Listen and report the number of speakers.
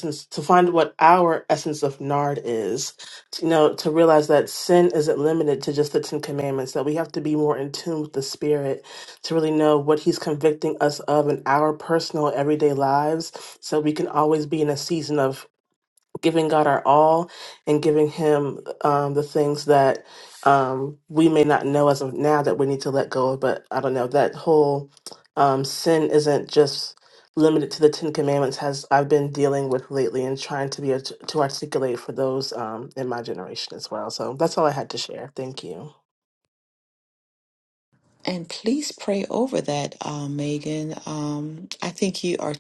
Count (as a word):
two